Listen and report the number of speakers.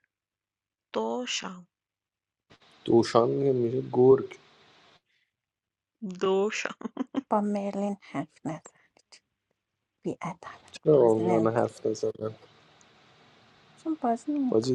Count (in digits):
3